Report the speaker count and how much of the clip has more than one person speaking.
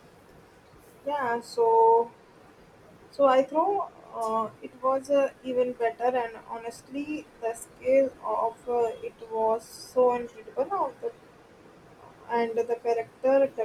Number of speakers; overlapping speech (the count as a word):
one, no overlap